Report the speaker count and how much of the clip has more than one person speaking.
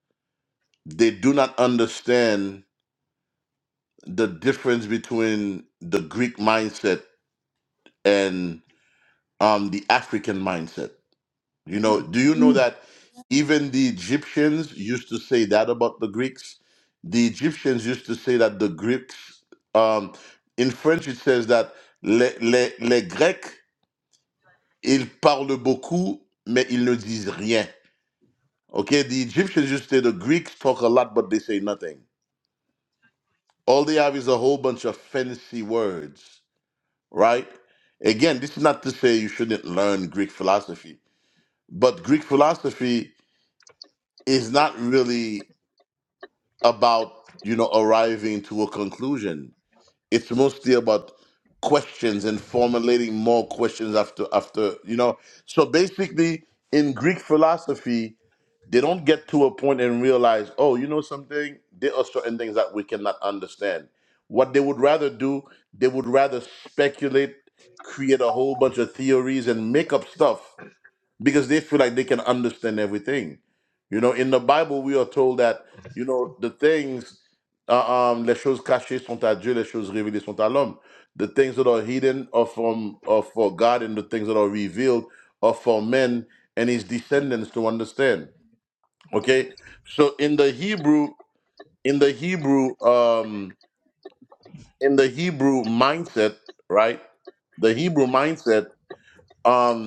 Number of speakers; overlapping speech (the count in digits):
1, no overlap